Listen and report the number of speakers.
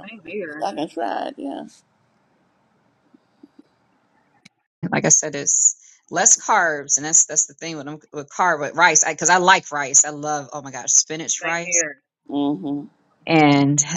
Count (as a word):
three